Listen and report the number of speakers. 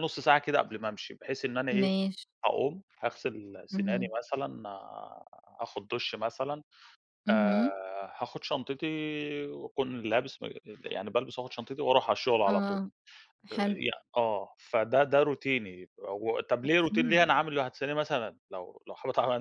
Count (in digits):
2